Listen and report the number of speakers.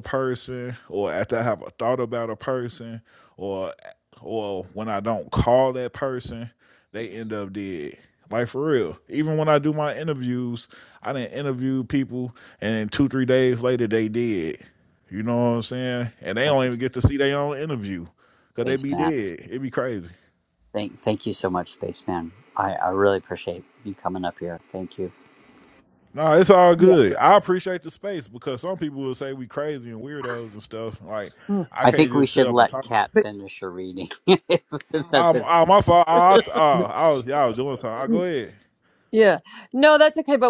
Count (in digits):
3